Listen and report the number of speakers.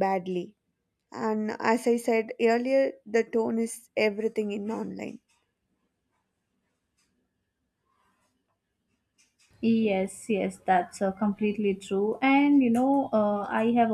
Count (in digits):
2